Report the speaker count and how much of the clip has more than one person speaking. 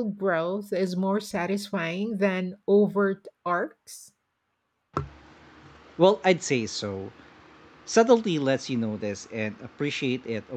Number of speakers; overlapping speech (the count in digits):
2, no overlap